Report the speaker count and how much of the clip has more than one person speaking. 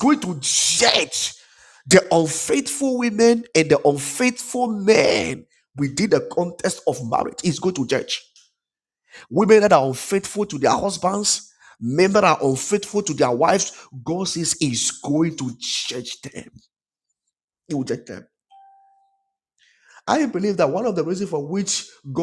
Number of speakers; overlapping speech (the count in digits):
1, no overlap